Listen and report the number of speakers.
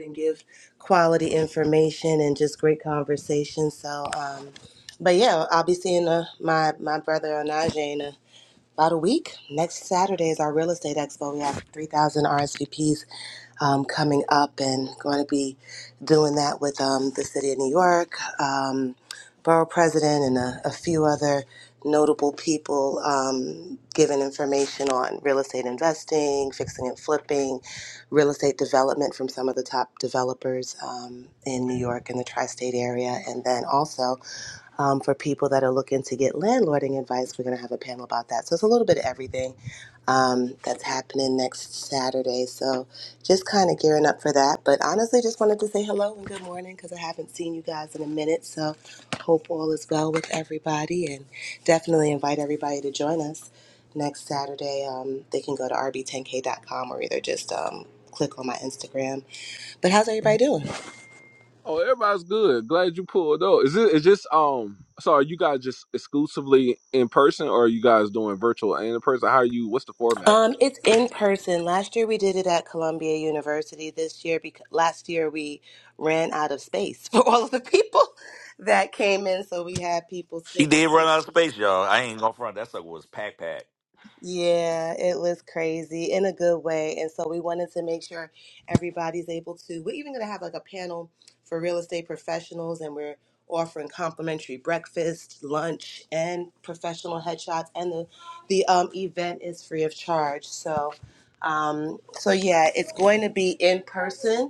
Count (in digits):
3